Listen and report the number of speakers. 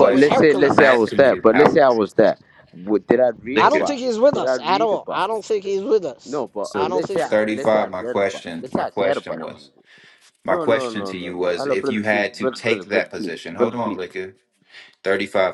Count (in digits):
3